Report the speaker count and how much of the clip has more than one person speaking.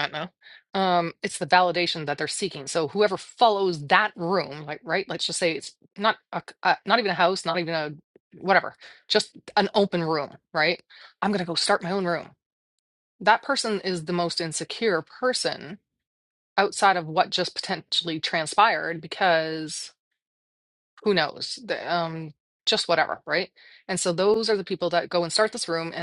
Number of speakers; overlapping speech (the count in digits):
1, no overlap